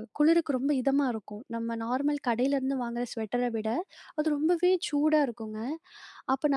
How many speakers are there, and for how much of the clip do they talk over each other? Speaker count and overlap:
one, no overlap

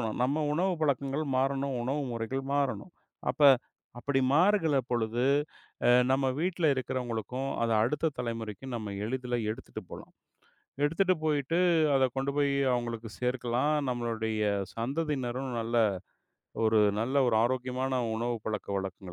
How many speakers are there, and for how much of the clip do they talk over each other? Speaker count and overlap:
one, no overlap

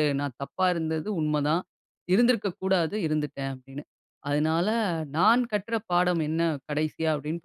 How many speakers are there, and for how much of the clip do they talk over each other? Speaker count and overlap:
one, no overlap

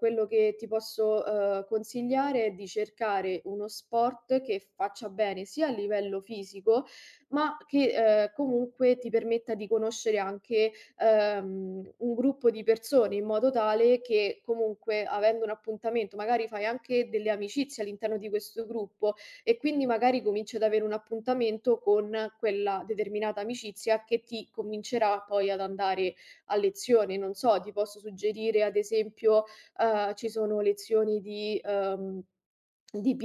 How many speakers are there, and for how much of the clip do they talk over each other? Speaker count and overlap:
one, no overlap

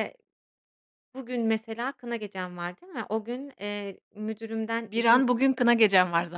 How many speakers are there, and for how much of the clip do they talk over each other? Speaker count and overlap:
two, about 5%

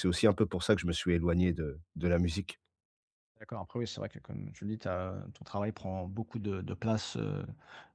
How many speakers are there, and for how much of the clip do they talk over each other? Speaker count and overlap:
two, no overlap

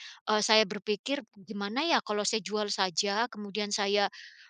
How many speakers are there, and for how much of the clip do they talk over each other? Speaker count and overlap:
one, no overlap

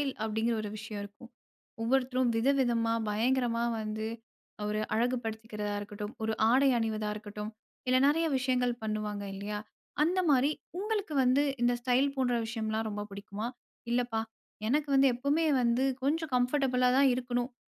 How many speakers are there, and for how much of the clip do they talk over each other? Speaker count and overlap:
one, no overlap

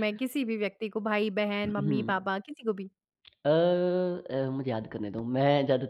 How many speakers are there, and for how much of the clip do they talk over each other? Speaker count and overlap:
two, about 8%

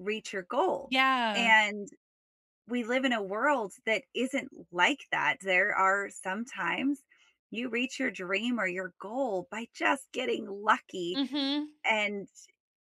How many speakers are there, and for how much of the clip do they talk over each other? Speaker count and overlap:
two, about 2%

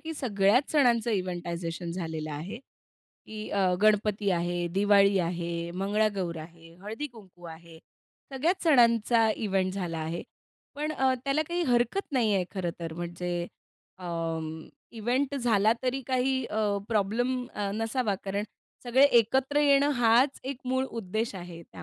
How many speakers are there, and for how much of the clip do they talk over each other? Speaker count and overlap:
one, no overlap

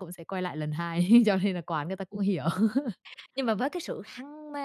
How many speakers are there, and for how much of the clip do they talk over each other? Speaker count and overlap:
two, under 1%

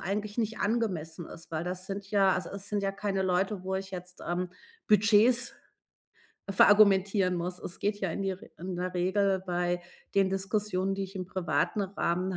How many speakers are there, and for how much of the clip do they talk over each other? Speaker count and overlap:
one, no overlap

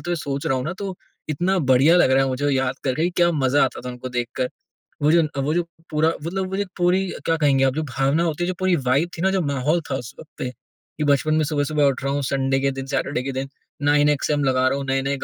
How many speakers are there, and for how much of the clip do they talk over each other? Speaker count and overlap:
one, no overlap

